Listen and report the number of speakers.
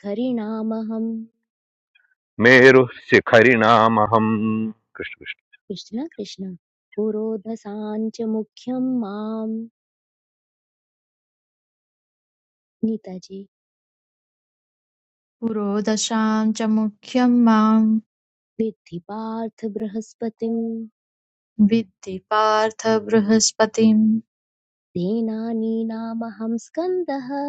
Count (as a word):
three